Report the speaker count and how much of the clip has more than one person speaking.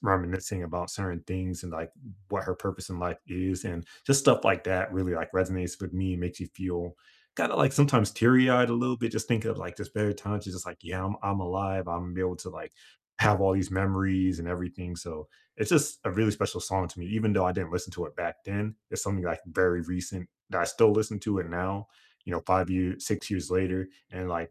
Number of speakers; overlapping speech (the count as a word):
one, no overlap